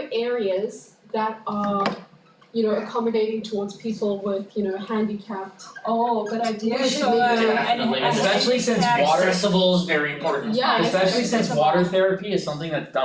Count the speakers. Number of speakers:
4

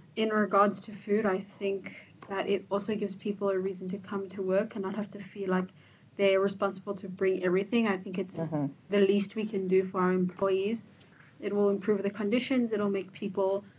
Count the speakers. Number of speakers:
1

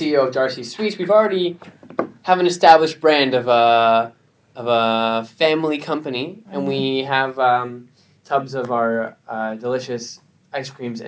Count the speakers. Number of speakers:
1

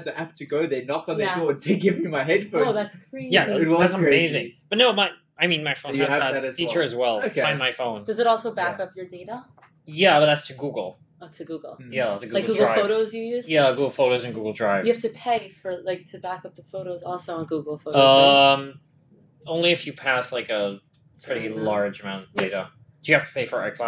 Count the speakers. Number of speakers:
3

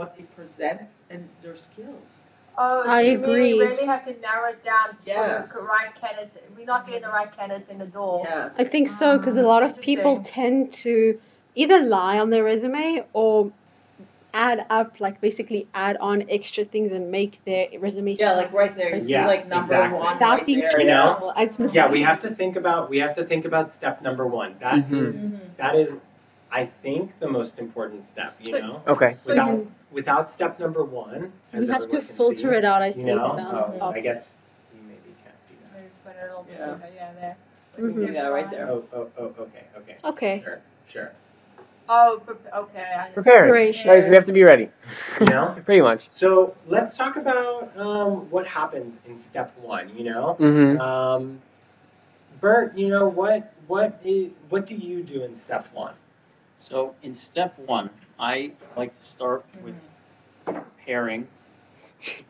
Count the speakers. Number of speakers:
6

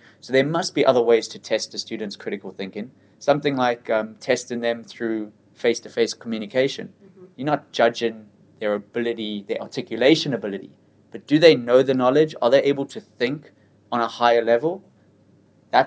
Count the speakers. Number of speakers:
1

